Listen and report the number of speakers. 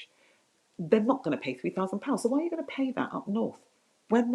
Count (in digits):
1